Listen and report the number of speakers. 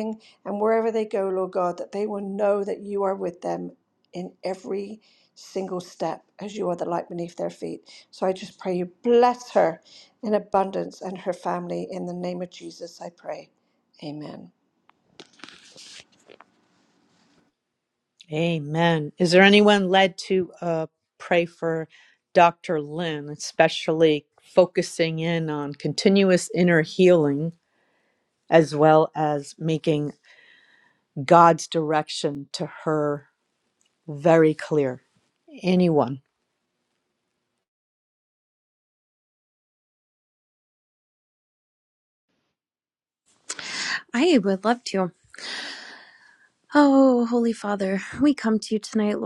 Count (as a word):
three